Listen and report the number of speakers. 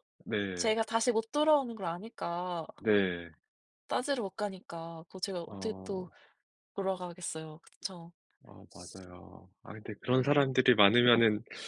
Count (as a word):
two